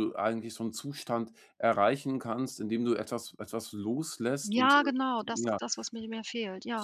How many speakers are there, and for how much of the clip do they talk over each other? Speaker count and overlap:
2, about 10%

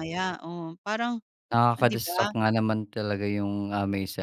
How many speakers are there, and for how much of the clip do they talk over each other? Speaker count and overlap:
2, about 13%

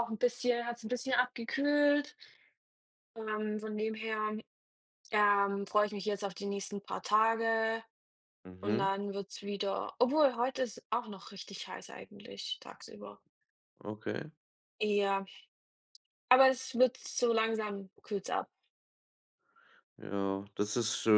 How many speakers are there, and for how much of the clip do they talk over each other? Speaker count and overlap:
2, about 1%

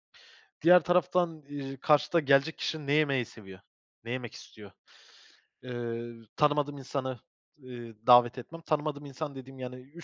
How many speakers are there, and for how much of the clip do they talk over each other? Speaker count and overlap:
1, no overlap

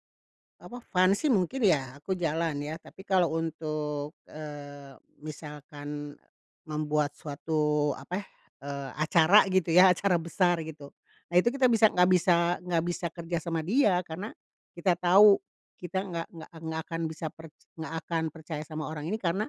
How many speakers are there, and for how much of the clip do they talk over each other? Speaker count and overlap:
1, no overlap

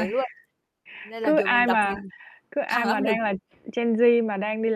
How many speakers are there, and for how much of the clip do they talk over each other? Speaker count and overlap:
2, about 29%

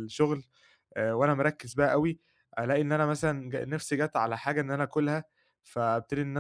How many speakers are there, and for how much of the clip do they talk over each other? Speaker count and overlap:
1, no overlap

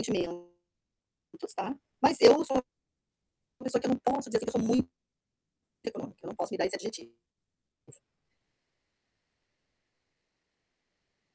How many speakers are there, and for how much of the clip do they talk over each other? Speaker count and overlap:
1, no overlap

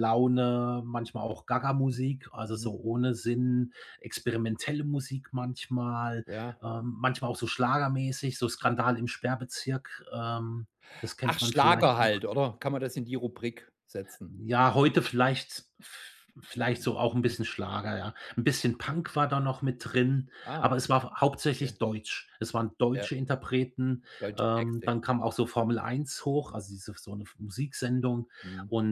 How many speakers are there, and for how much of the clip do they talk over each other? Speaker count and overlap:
2, about 8%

